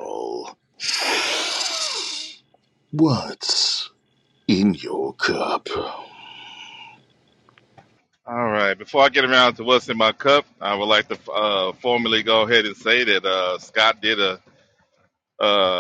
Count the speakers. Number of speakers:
2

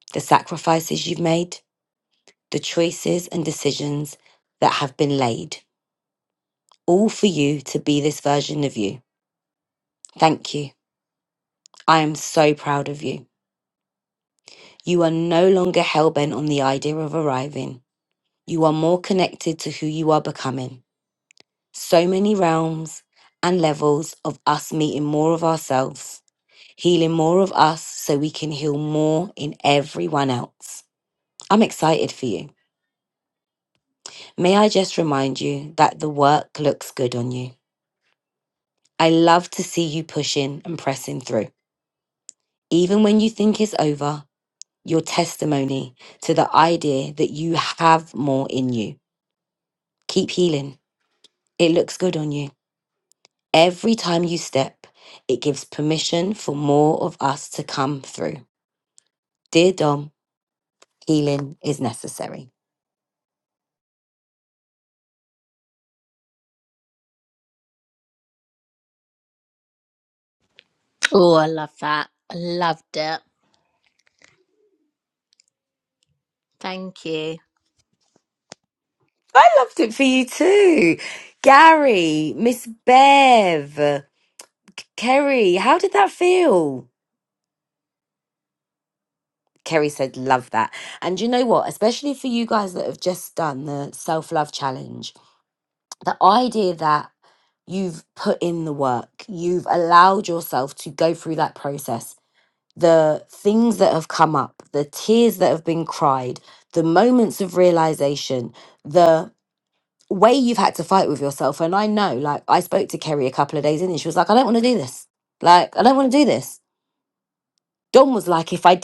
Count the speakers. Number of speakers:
2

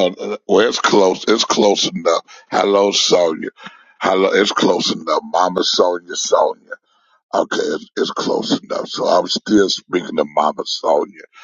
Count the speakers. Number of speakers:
1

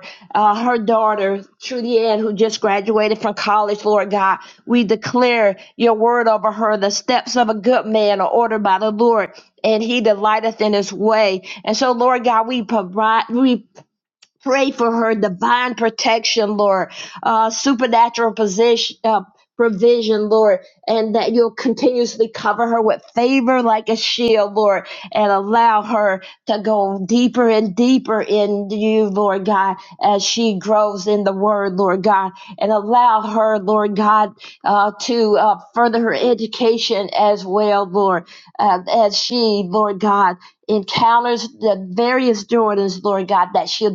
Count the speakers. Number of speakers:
1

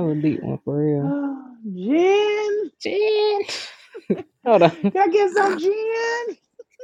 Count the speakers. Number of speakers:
2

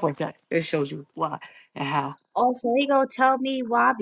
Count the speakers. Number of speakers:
2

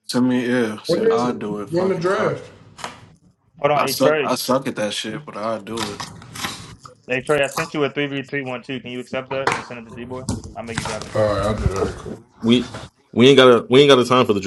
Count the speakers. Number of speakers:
4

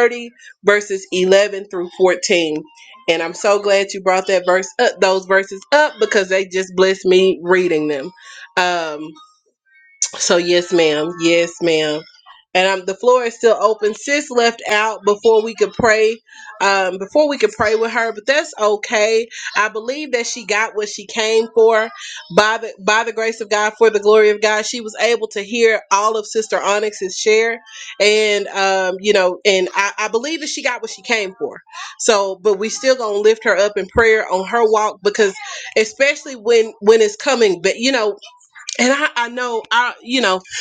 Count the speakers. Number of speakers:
1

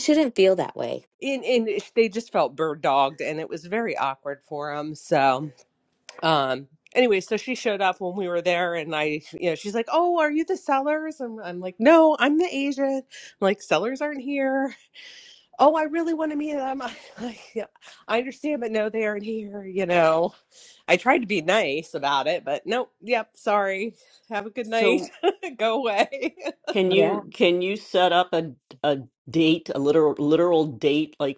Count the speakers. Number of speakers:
3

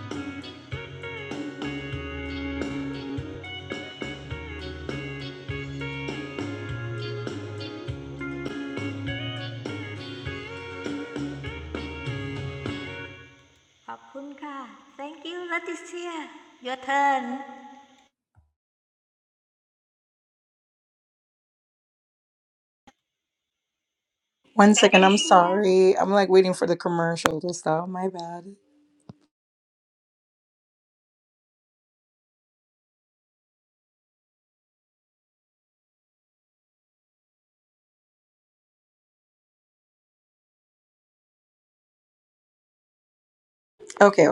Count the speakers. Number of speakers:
2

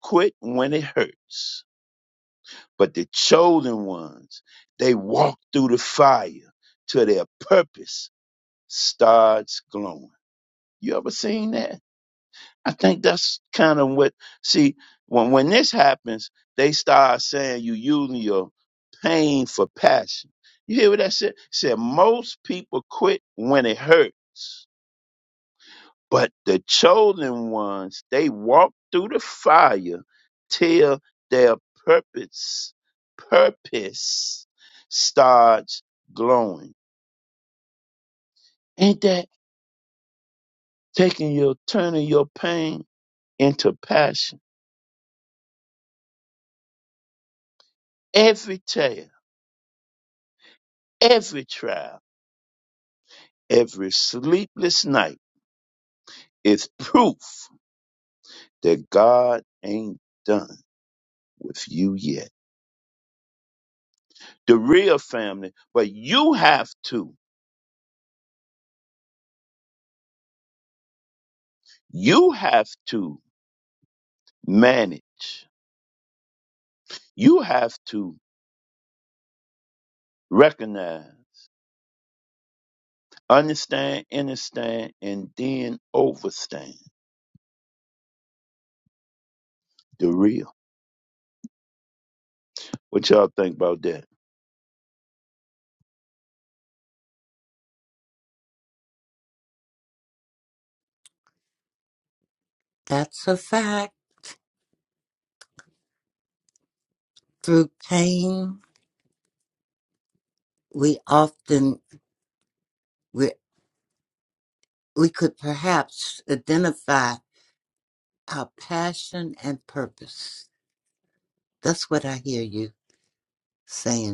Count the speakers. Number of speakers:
2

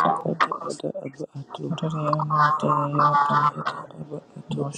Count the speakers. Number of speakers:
2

